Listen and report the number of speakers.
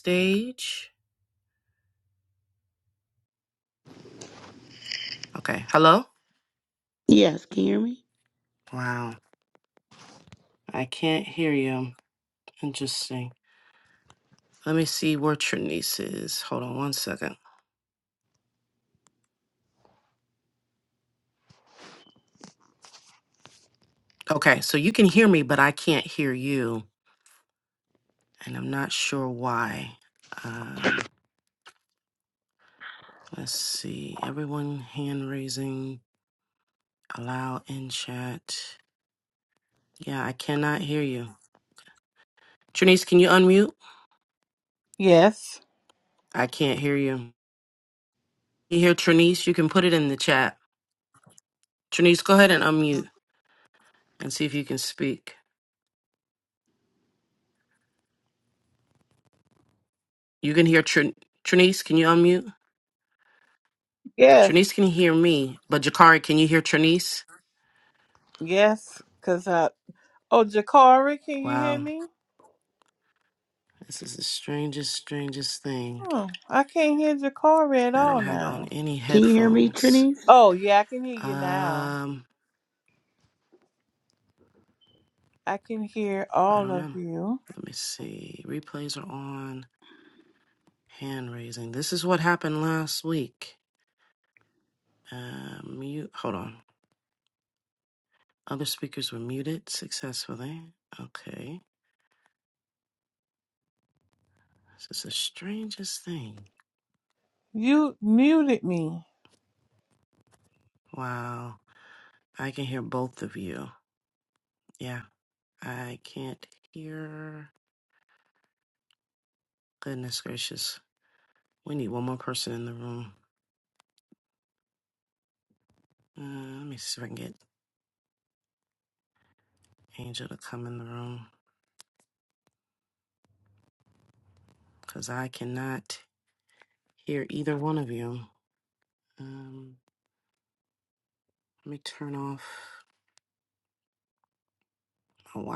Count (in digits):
3